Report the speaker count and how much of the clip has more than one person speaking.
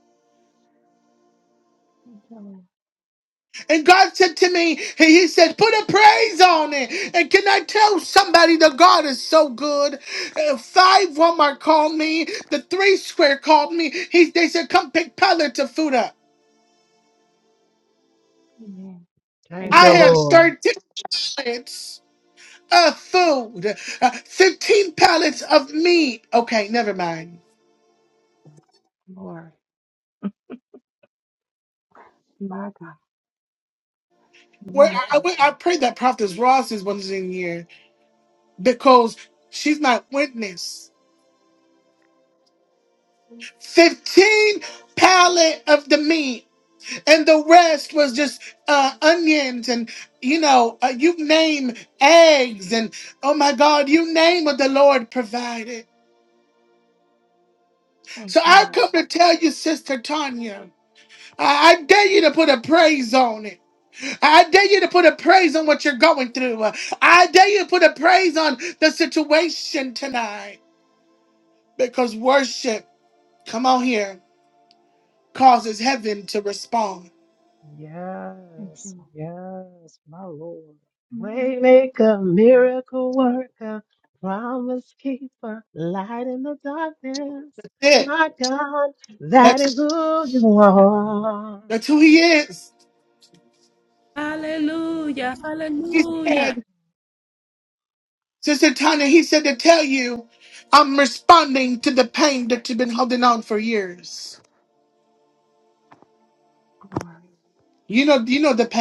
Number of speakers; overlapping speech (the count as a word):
four, about 3%